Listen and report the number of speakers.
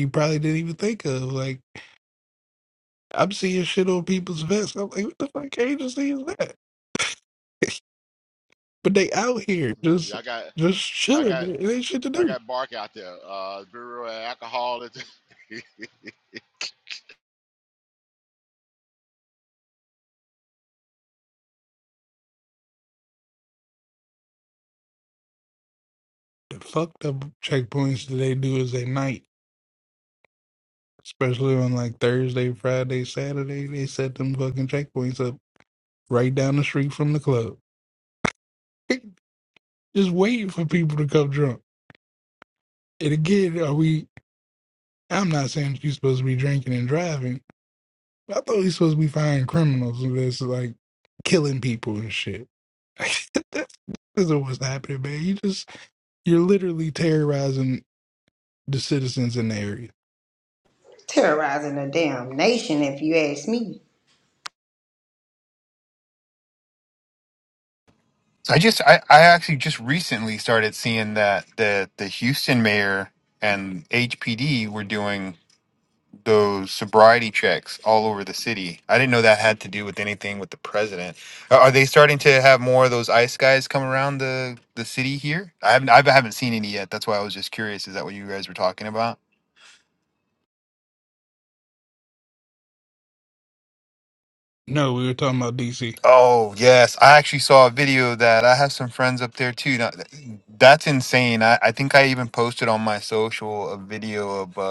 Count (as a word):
four